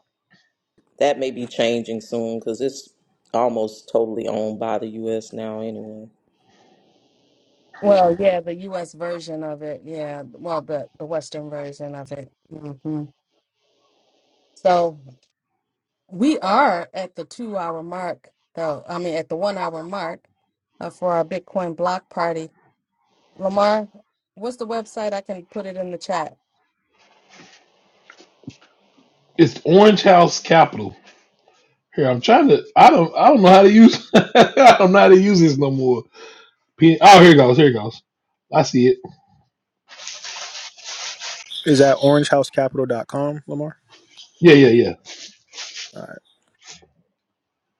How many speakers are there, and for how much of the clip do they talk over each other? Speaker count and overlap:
4, no overlap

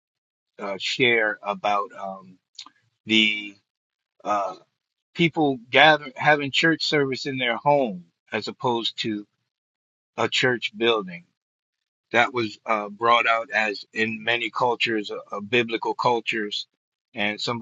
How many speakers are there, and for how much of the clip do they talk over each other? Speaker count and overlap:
1, no overlap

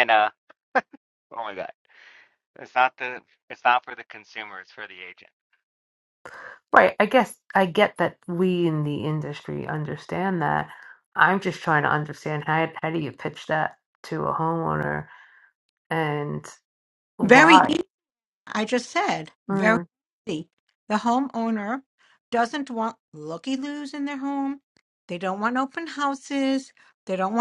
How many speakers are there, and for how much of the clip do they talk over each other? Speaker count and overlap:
3, about 2%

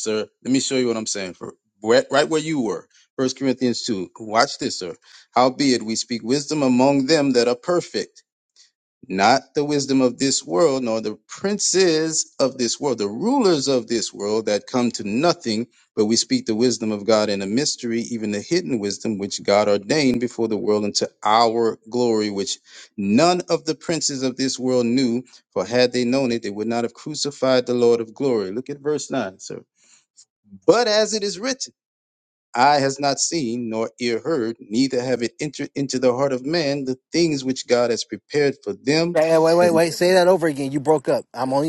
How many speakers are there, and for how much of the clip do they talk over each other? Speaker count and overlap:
2, under 1%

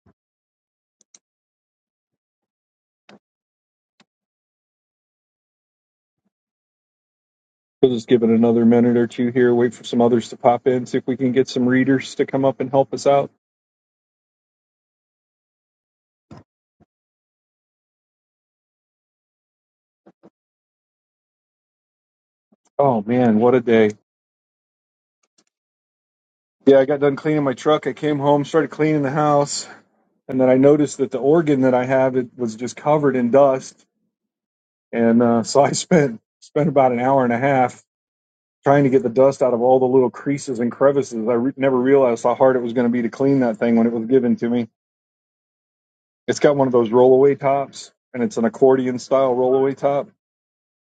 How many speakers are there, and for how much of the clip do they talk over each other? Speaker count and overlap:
1, no overlap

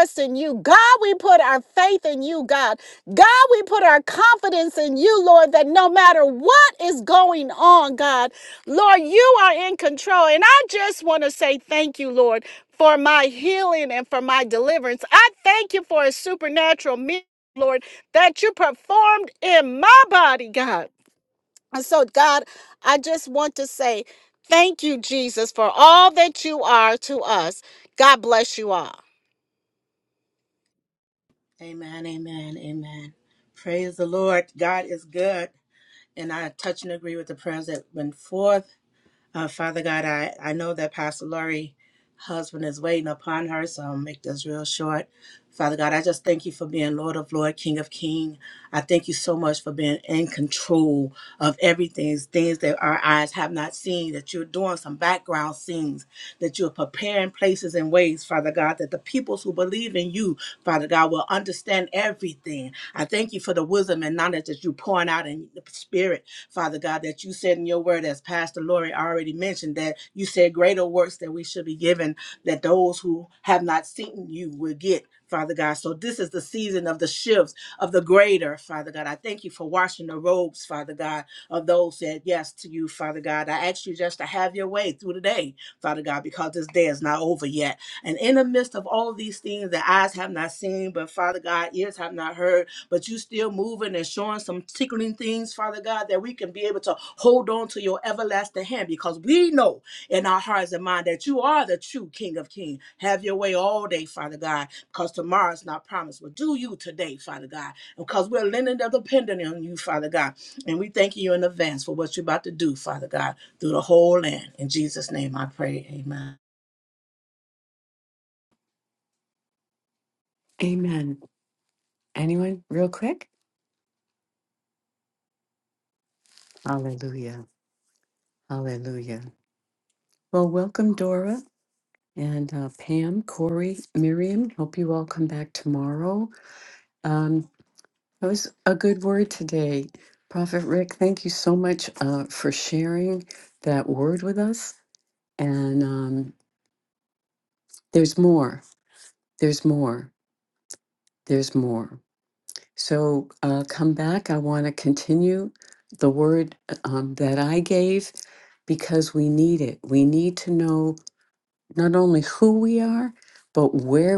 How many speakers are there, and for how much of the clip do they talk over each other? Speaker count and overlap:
3, no overlap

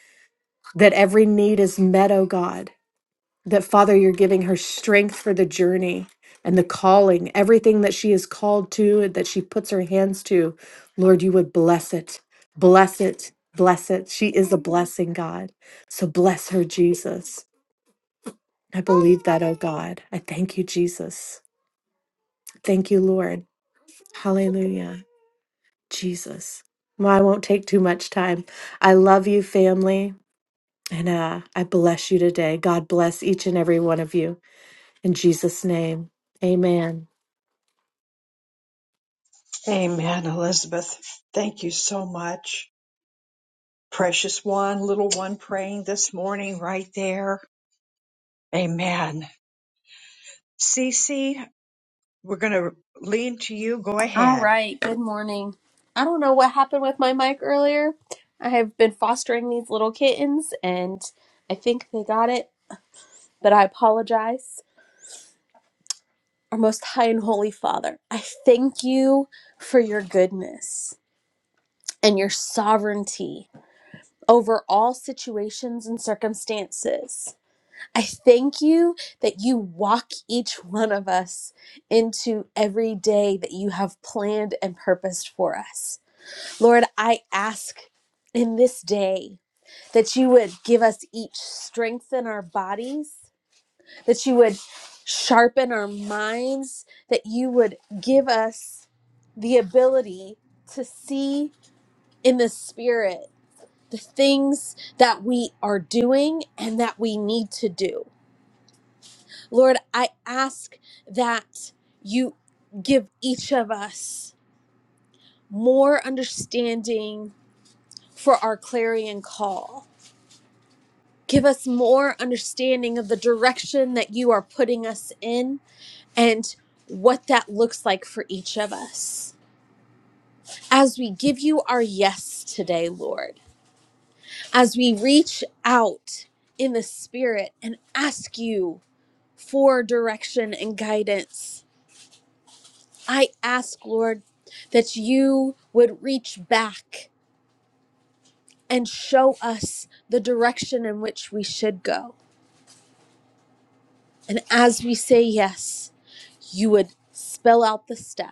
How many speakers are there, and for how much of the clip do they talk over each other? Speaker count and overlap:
3, under 1%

